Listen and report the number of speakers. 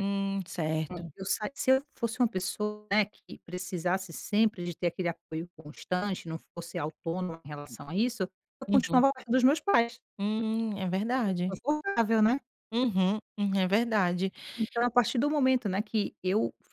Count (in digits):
2